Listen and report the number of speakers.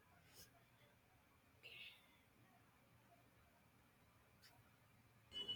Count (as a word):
zero